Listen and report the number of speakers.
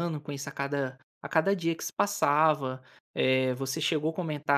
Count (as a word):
one